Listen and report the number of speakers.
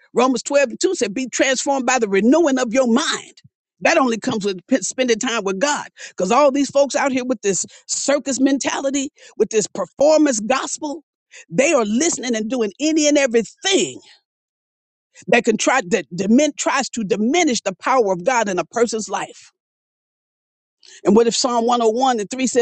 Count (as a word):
one